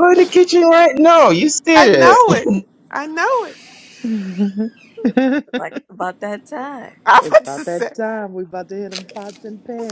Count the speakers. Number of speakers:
4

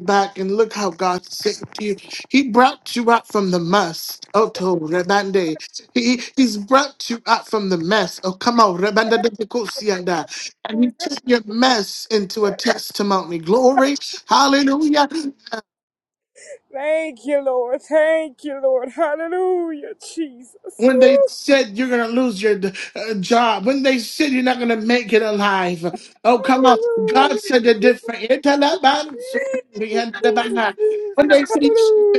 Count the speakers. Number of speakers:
2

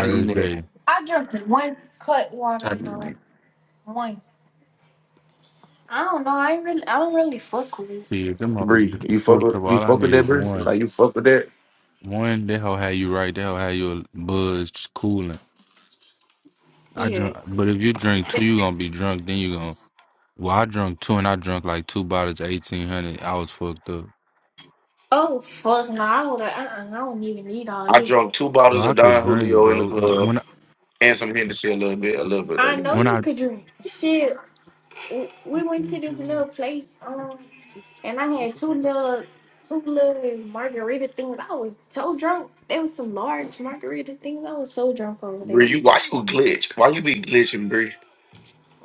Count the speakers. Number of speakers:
3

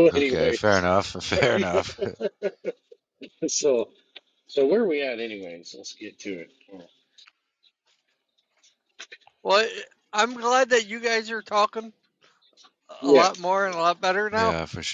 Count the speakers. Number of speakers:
3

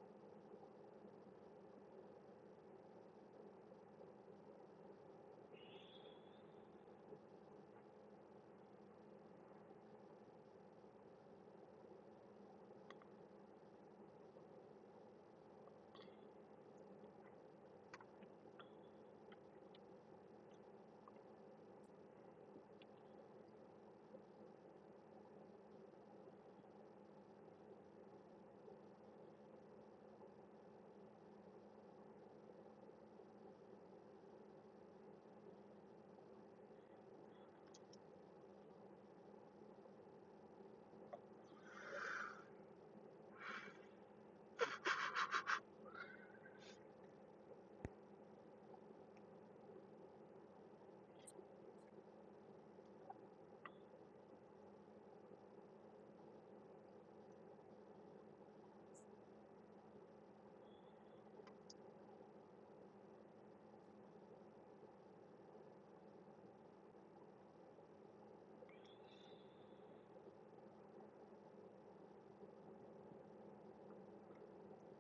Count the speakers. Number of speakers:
0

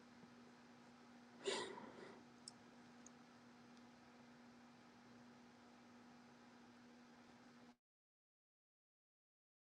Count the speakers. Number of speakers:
0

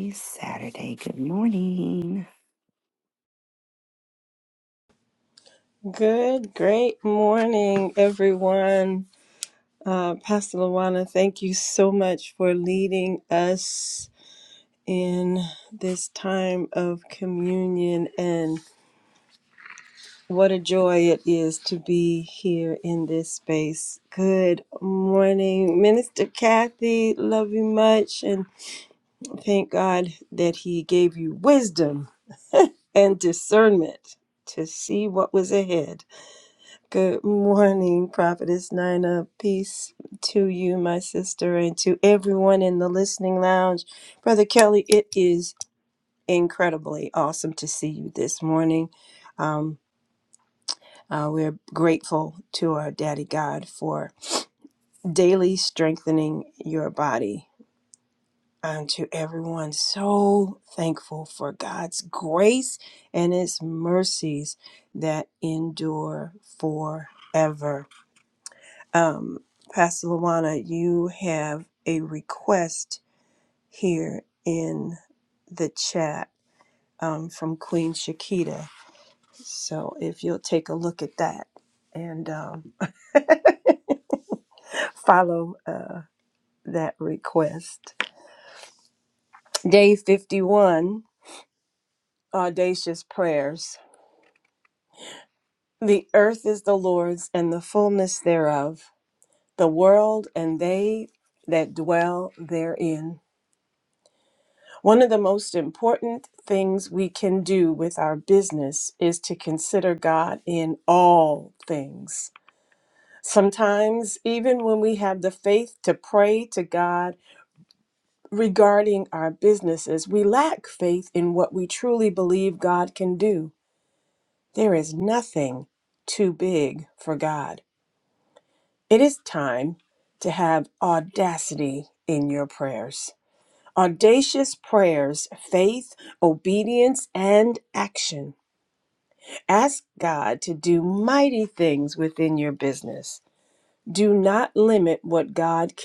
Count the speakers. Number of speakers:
2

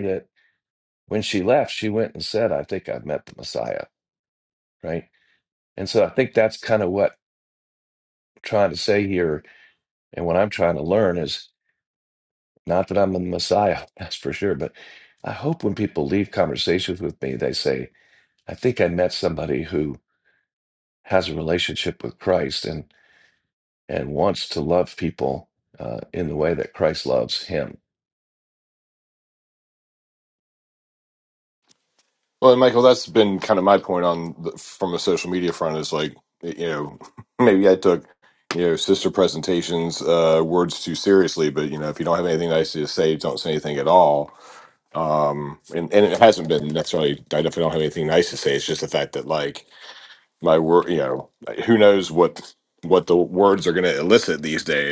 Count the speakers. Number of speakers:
2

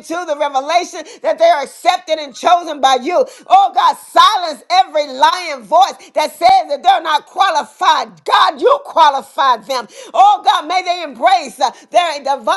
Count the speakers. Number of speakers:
1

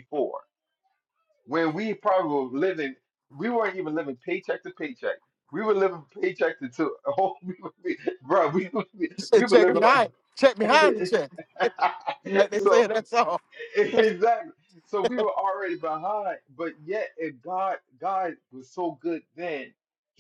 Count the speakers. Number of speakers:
2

